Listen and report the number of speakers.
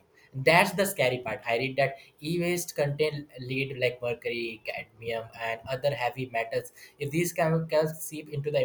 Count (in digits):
1